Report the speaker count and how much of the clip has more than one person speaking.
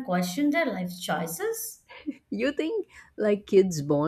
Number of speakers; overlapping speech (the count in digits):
2, no overlap